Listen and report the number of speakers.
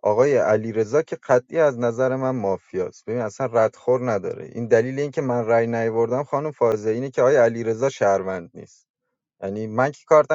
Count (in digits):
1